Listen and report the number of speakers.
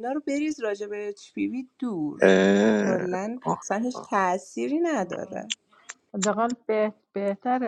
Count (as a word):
three